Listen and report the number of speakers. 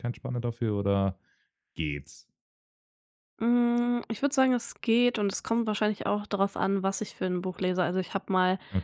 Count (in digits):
2